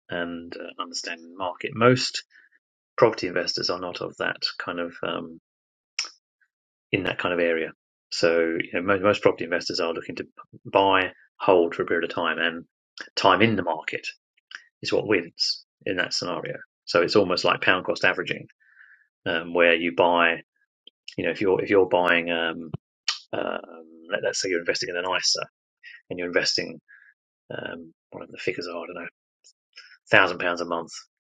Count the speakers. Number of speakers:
1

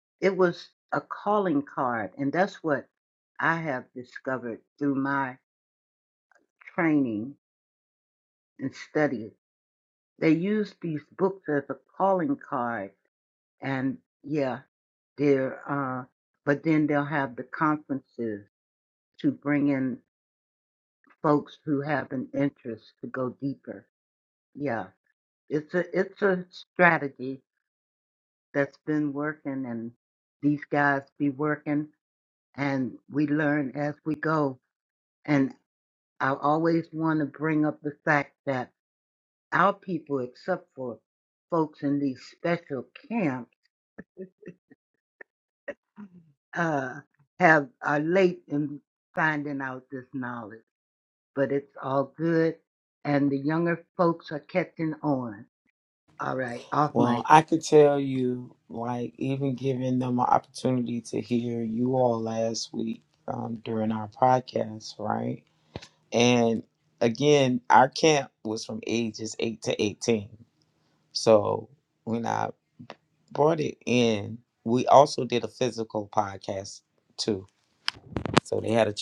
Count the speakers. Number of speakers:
2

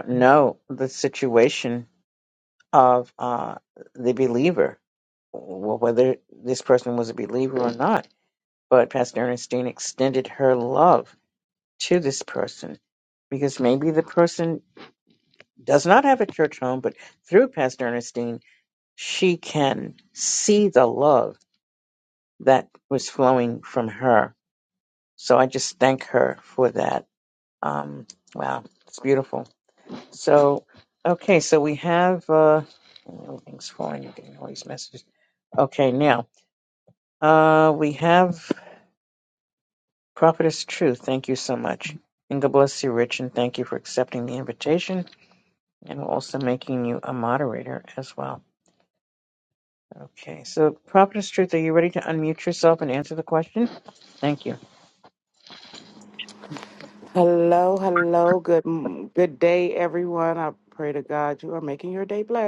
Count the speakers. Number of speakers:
2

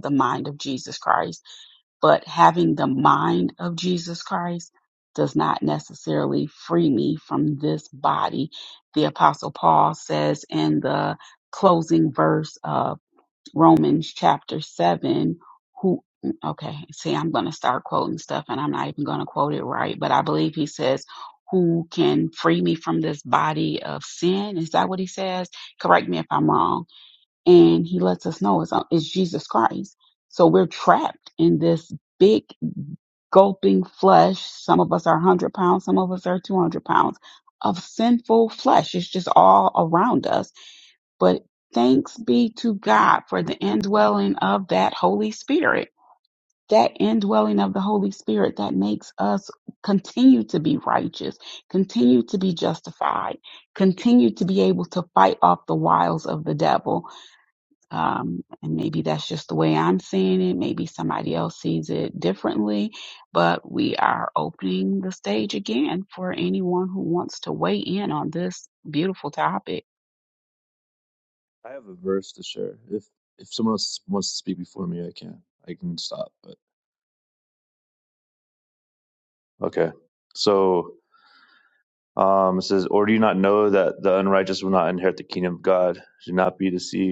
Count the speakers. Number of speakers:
2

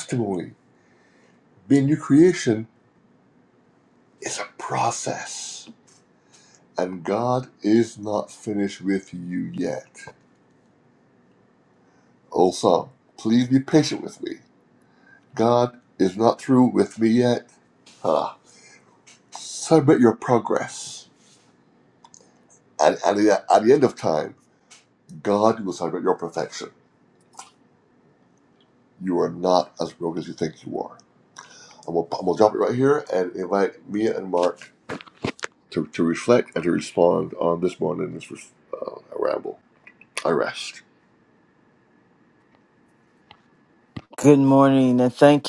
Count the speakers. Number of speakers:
2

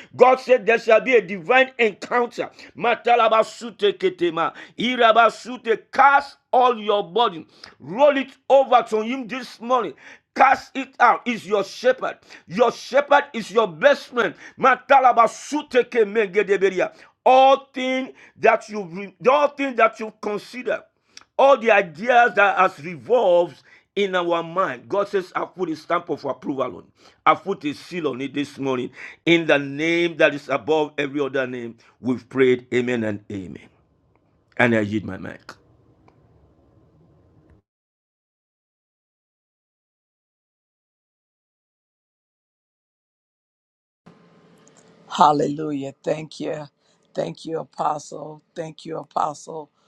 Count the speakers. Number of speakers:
2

